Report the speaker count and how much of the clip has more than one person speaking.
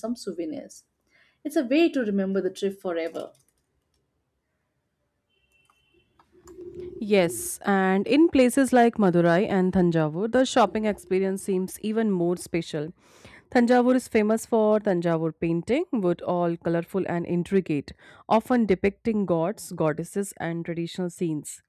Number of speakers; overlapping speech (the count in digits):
2, no overlap